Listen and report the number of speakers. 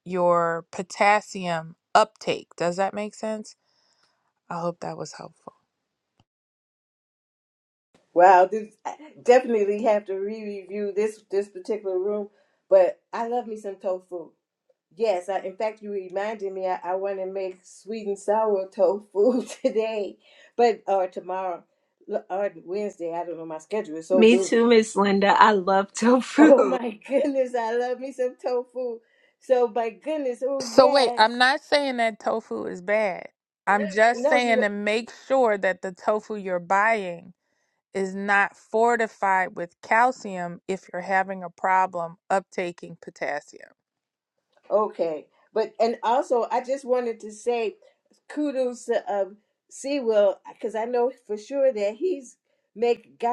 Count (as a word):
three